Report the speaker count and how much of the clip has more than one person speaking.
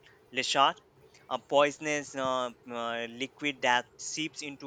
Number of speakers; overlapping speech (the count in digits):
1, no overlap